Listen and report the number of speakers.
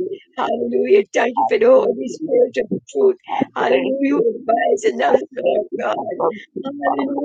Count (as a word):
two